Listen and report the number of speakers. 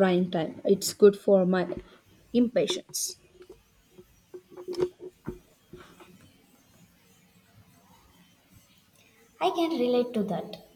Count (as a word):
two